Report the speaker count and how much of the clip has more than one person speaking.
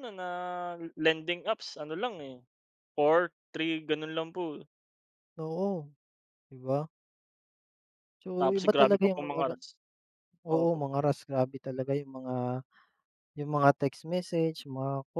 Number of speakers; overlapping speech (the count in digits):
2, about 10%